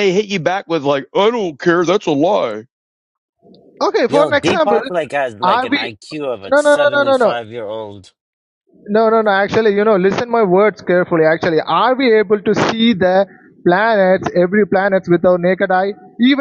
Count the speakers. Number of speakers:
three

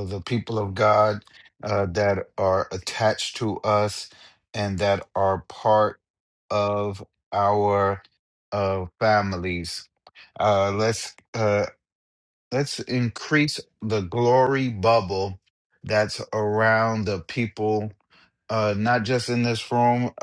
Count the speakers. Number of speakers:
one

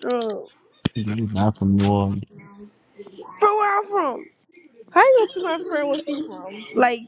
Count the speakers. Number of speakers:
three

